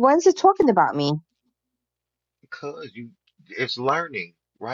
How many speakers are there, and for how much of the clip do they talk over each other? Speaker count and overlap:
two, no overlap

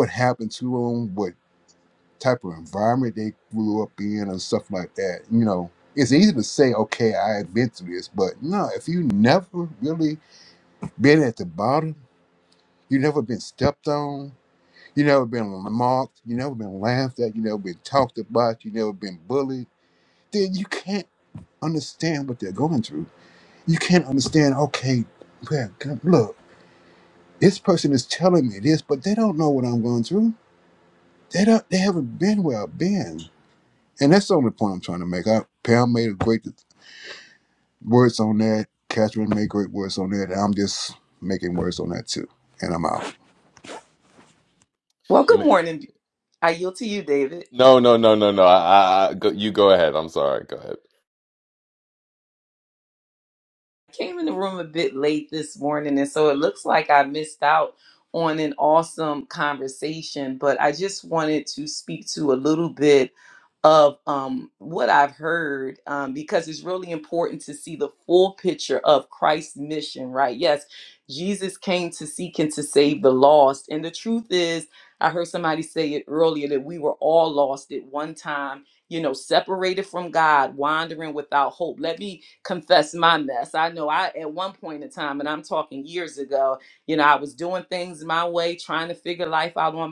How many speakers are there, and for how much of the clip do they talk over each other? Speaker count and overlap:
three, under 1%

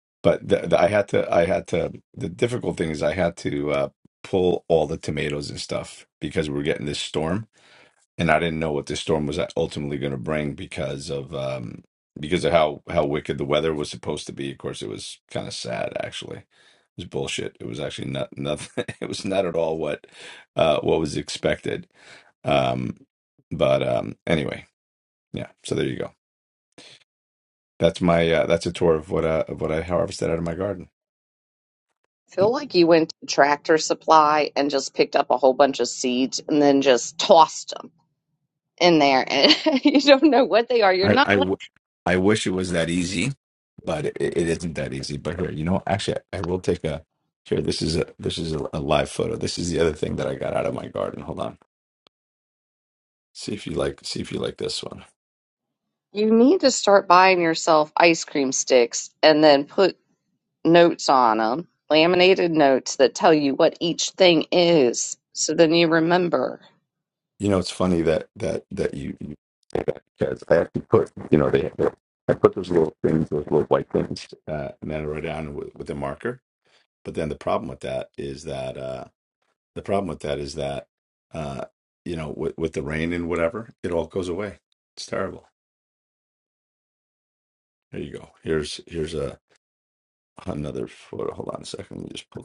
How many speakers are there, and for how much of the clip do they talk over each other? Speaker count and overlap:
two, under 1%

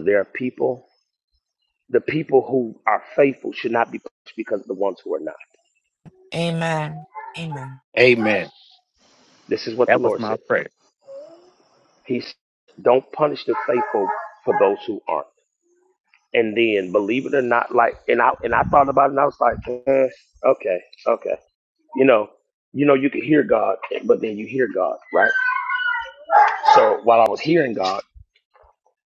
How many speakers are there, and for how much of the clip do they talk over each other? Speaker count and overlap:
three, about 2%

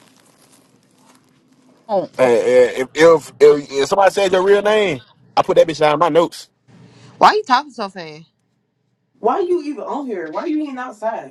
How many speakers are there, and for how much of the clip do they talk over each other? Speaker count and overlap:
three, no overlap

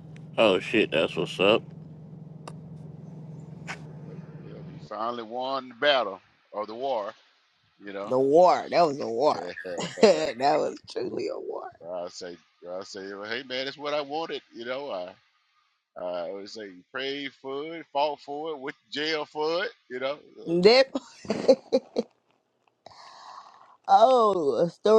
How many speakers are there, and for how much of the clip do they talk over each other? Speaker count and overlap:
three, about 1%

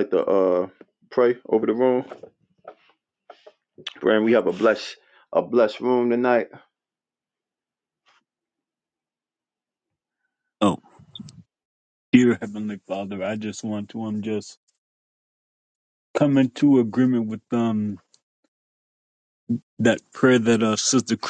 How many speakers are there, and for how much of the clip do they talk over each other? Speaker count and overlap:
two, no overlap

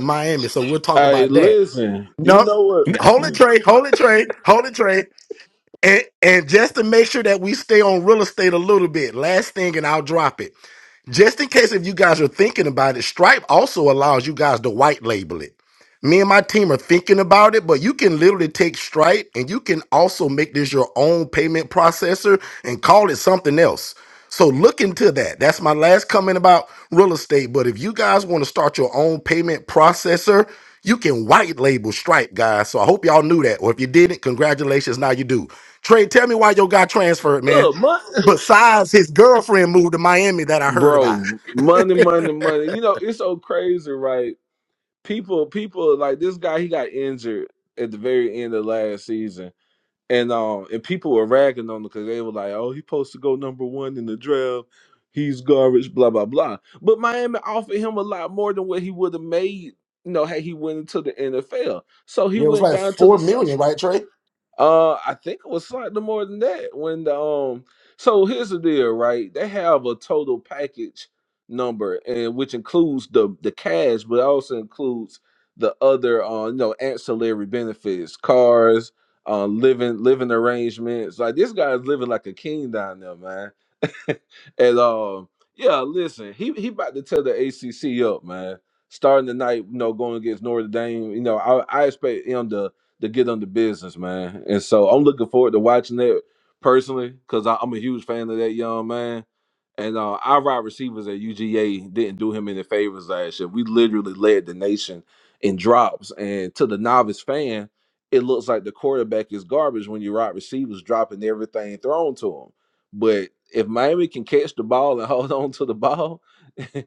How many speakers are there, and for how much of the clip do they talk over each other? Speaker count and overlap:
two, about 2%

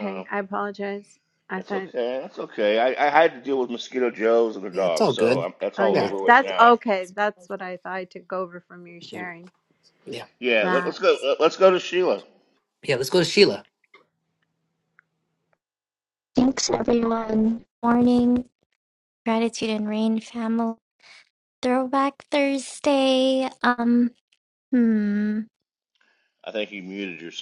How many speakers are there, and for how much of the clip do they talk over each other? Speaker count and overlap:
four, about 10%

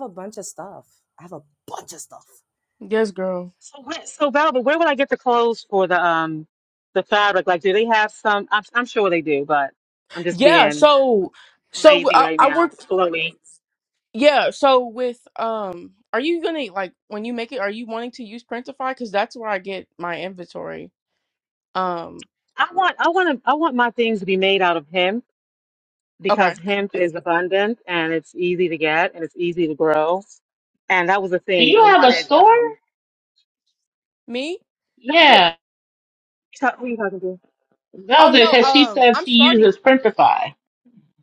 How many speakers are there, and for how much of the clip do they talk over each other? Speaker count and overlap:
four, about 11%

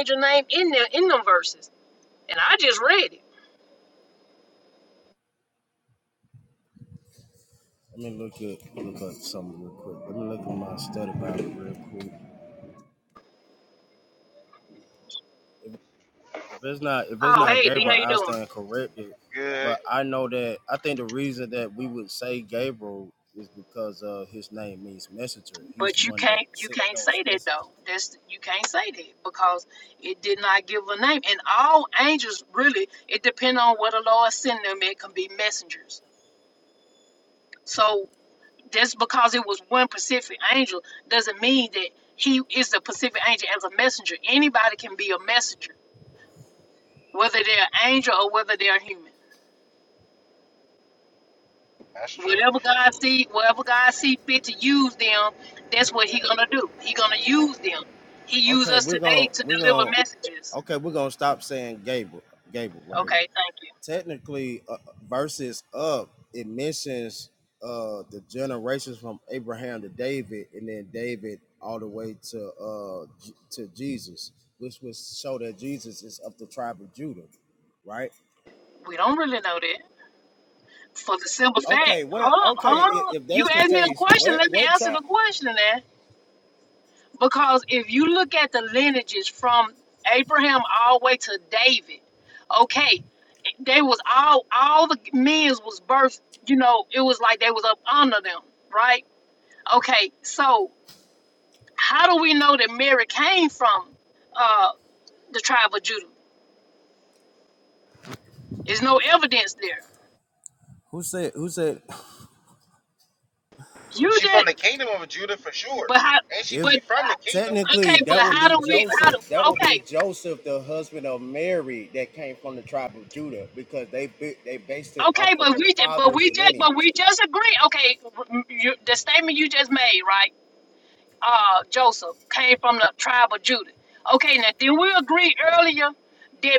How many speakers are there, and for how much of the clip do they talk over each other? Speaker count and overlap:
three, about 10%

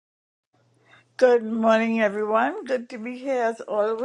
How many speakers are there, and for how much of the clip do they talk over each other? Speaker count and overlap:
one, no overlap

